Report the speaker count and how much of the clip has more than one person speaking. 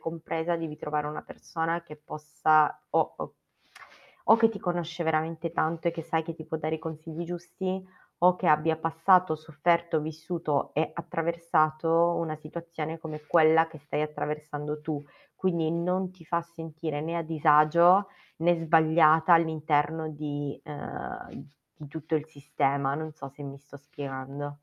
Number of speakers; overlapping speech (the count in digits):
1, no overlap